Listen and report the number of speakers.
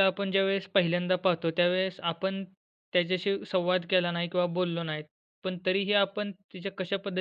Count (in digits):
1